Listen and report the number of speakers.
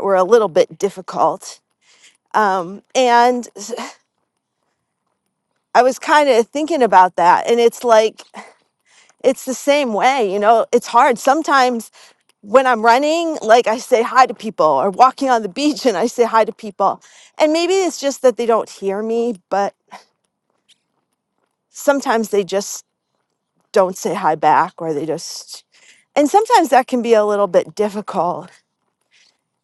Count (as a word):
one